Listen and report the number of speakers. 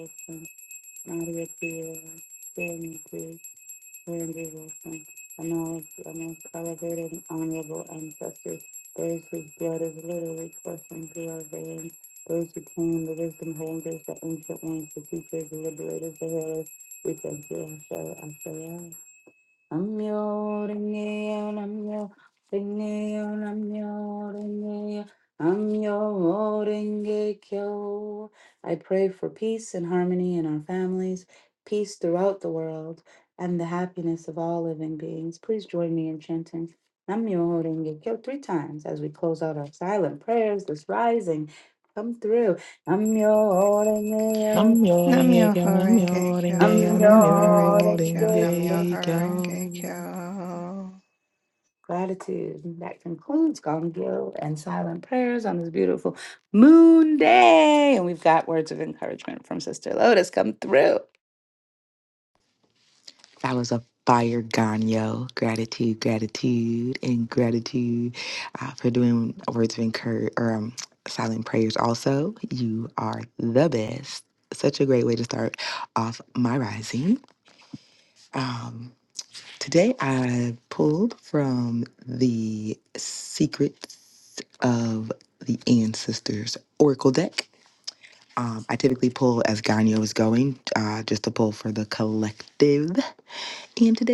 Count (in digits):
3